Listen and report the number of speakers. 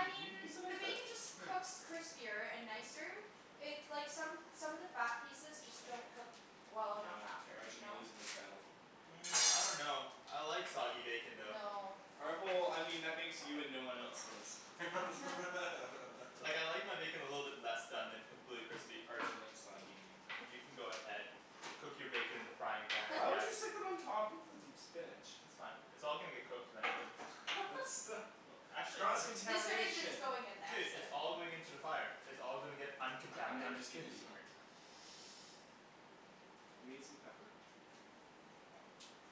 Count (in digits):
3